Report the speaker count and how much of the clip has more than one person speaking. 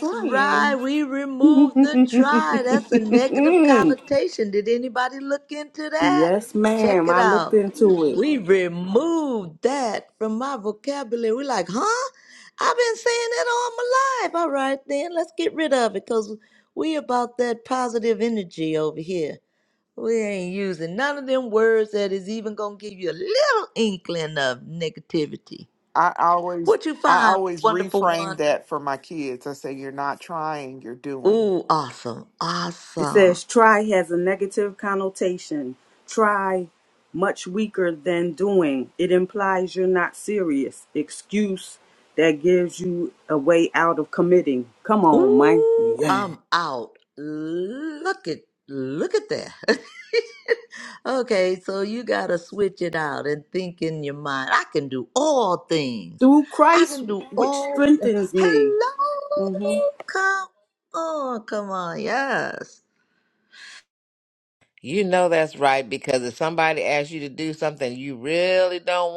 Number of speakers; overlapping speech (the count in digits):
4, about 10%